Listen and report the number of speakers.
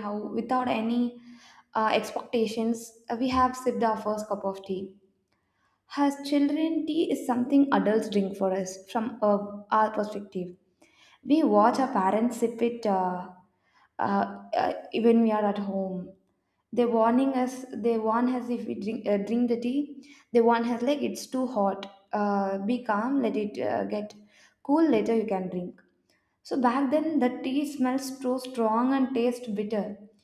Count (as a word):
one